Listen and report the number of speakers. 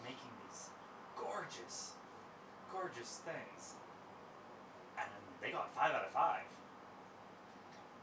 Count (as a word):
one